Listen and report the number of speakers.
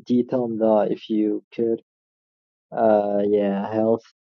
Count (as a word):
one